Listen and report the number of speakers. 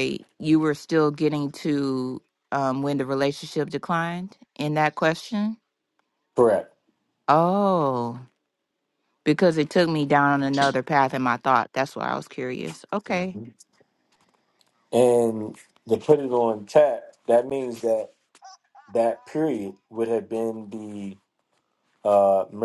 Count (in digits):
2